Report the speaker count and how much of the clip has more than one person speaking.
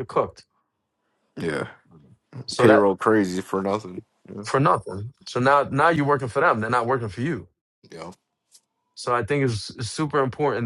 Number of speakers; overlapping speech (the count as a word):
two, about 3%